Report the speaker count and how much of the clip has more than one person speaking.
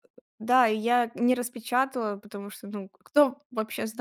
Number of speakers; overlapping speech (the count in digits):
1, no overlap